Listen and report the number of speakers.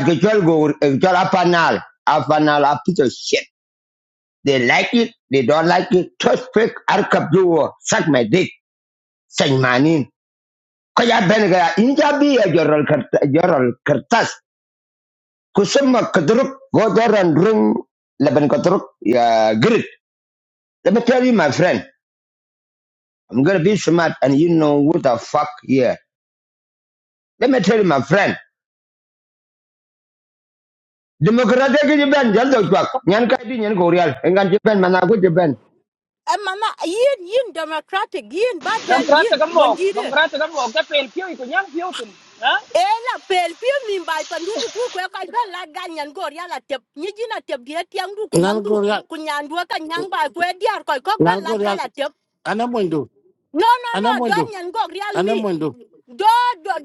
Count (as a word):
four